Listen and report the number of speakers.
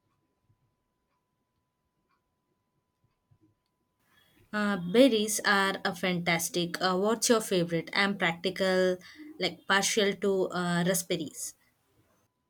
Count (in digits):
1